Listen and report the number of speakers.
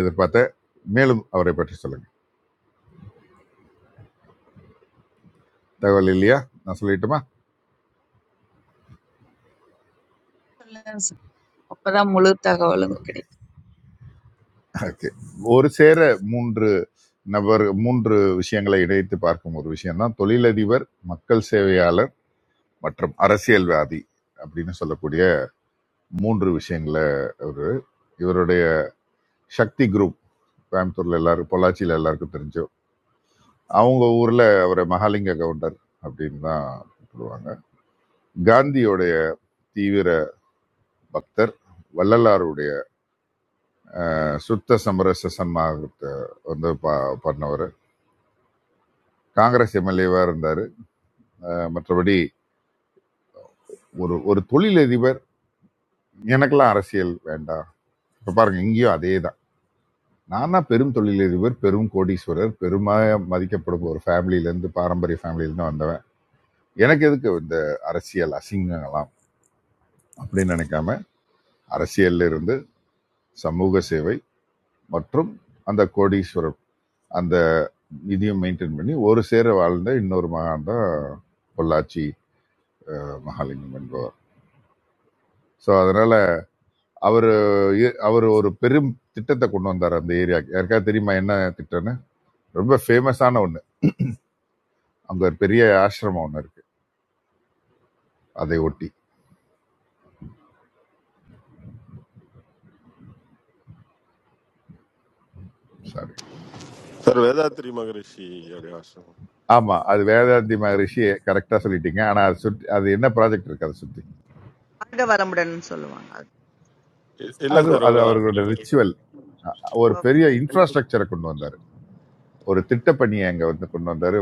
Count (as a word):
four